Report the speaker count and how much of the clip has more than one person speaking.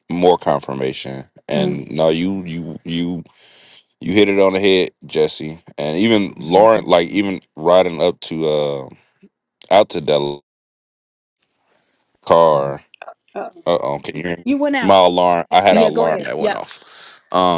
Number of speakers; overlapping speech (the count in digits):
2, about 7%